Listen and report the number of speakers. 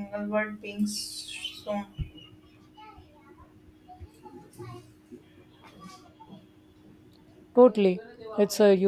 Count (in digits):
2